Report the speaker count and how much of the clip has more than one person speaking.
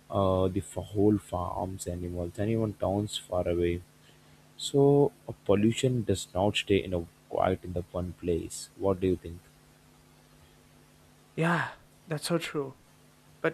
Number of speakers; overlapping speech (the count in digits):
2, no overlap